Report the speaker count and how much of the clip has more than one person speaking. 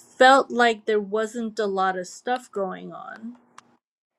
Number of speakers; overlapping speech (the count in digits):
1, no overlap